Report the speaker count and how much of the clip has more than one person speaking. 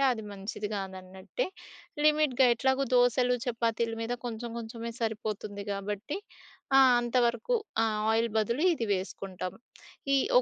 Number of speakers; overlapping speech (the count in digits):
1, no overlap